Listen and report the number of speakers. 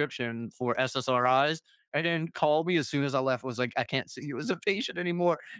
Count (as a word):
one